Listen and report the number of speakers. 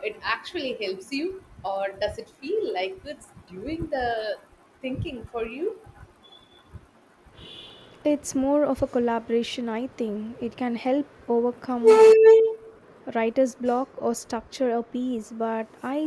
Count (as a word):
two